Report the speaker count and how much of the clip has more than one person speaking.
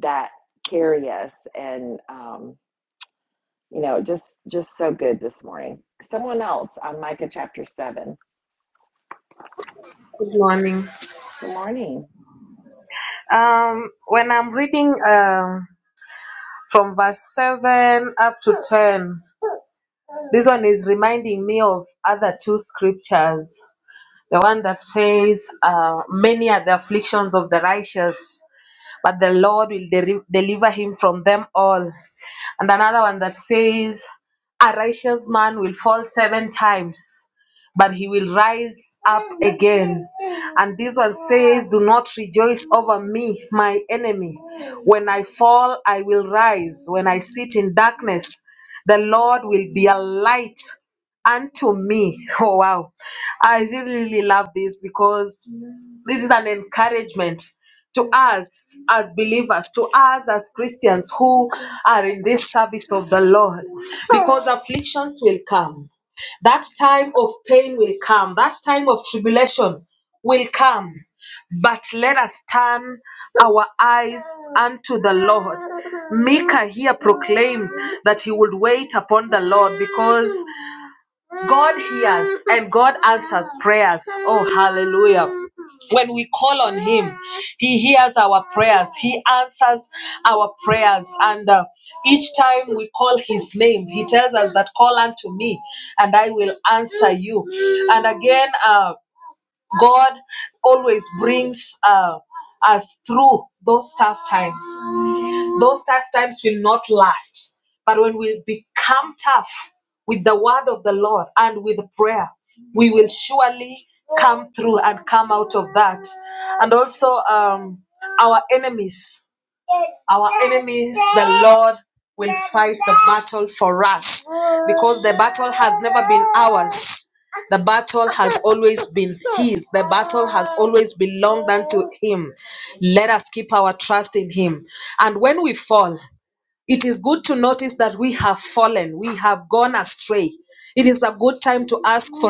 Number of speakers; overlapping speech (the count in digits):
2, no overlap